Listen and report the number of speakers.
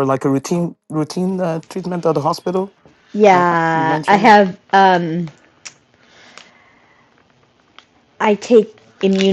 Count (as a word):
two